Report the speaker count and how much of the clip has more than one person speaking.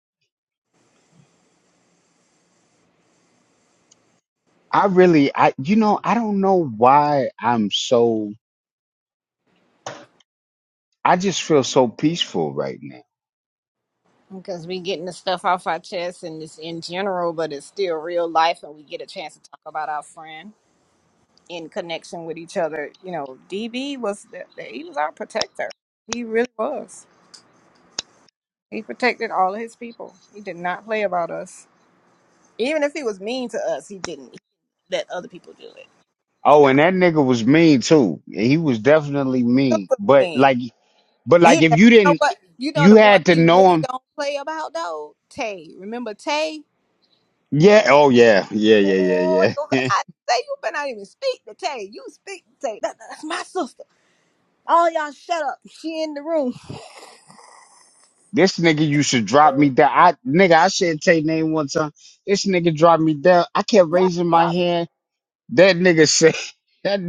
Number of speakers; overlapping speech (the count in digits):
2, about 6%